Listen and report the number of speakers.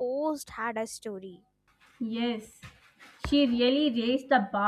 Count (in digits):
2